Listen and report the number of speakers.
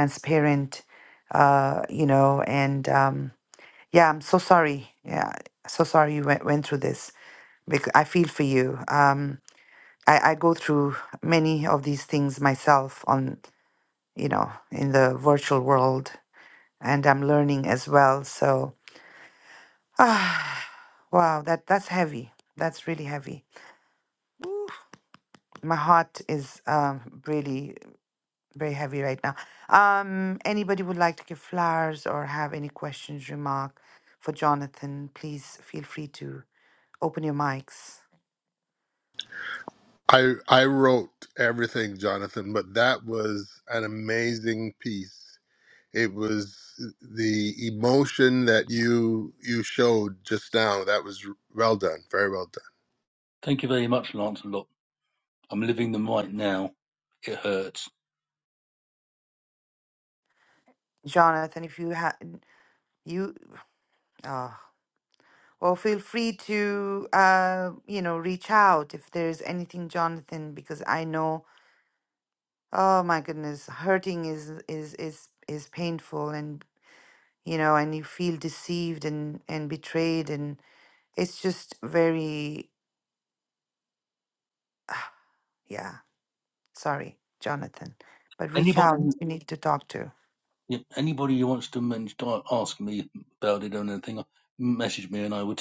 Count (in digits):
3